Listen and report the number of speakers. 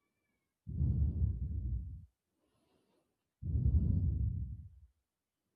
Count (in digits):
0